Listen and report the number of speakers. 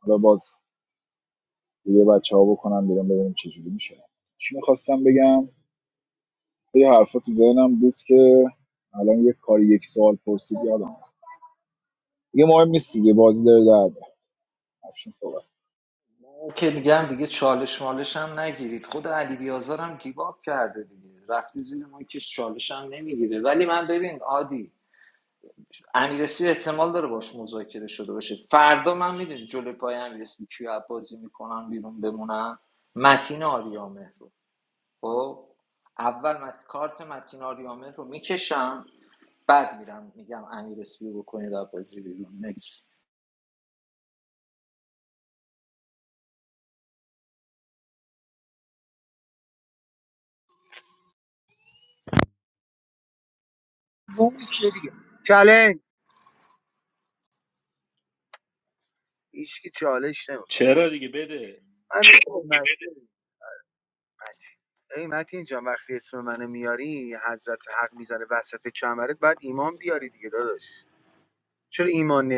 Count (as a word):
four